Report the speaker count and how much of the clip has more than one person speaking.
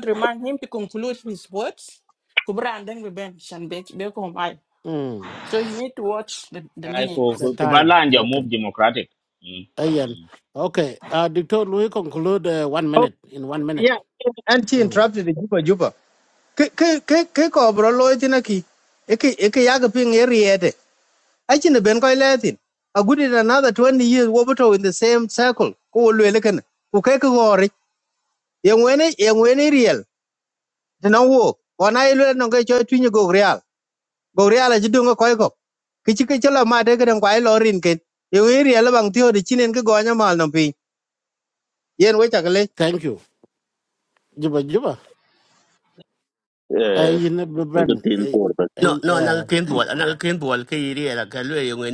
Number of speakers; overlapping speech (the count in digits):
6, about 6%